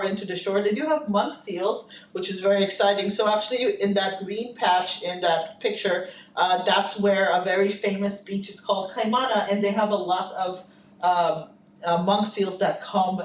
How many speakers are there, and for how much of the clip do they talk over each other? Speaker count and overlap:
1, no overlap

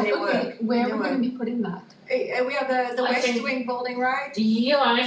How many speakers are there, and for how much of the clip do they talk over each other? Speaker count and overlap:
3, about 34%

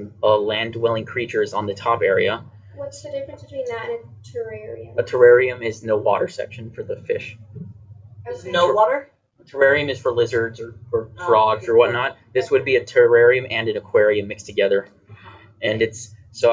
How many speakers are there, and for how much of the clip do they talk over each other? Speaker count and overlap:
3, about 10%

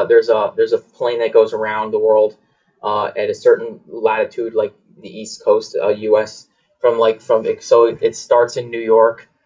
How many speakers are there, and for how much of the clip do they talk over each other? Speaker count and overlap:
1, no overlap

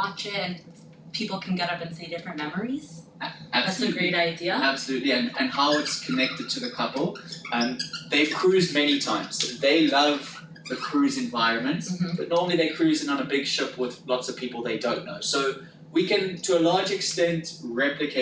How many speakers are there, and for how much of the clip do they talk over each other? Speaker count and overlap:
2, about 4%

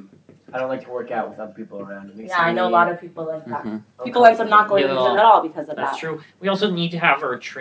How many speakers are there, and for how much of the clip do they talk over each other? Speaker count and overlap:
3, about 27%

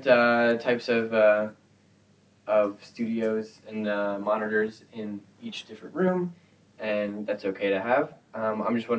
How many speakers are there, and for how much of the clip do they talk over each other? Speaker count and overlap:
1, no overlap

